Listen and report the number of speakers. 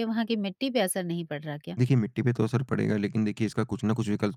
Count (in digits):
2